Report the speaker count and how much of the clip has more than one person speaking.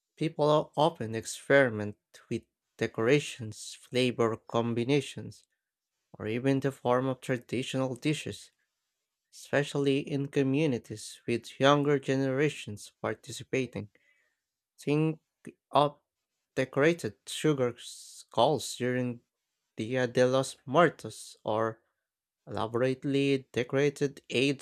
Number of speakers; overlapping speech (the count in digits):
1, no overlap